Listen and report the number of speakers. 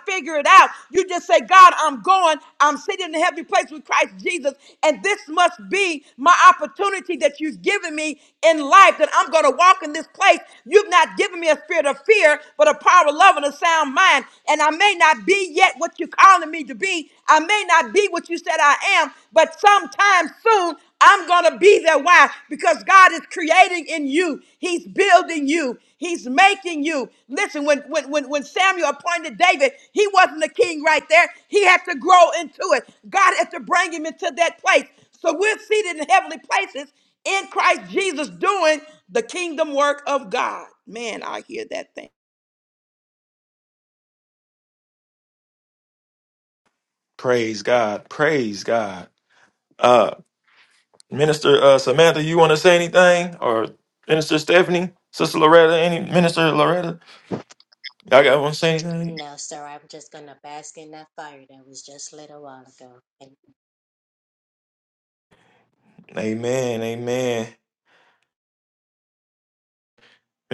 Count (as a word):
three